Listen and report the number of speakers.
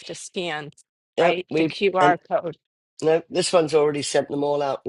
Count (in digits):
2